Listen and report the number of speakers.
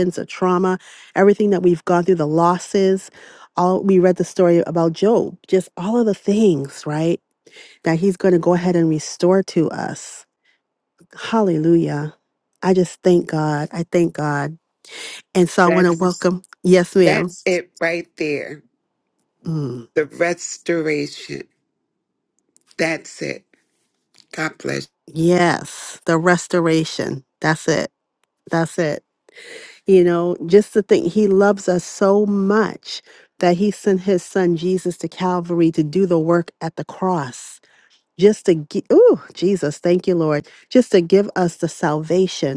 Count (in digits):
2